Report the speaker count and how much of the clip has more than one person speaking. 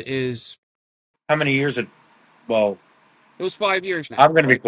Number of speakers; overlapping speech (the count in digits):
2, about 9%